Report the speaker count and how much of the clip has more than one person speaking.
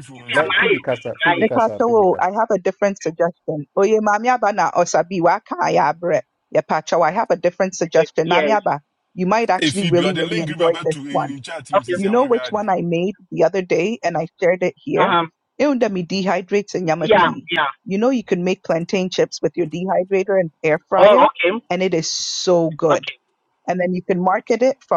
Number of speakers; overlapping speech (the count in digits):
4, about 20%